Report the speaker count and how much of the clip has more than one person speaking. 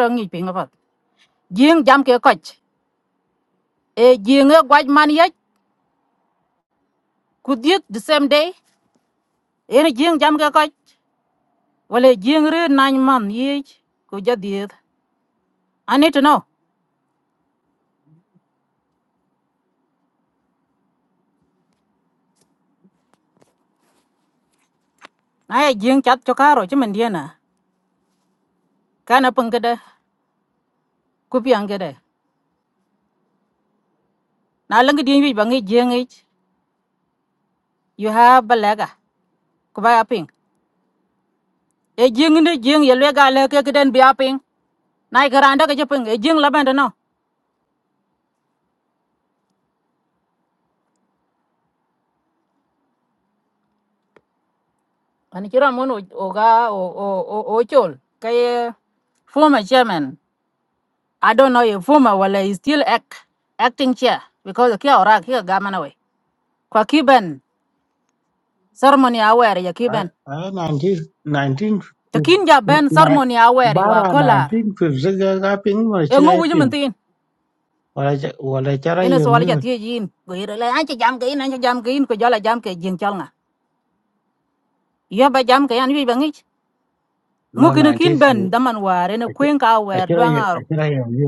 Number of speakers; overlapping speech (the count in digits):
2, about 5%